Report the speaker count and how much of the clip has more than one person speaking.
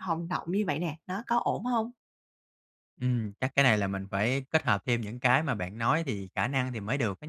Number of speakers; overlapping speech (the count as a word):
two, no overlap